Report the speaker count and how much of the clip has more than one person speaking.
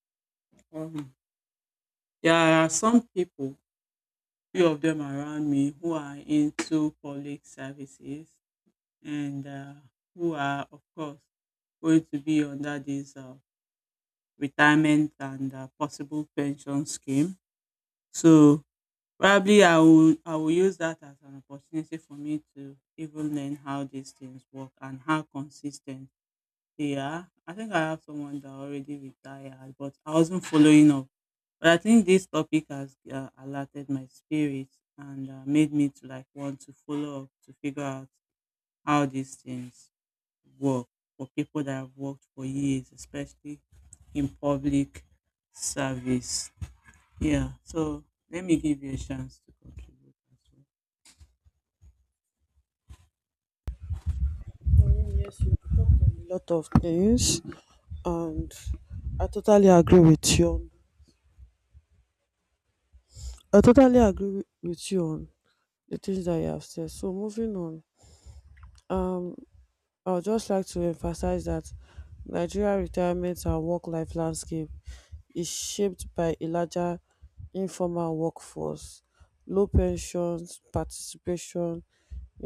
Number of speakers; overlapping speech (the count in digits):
2, no overlap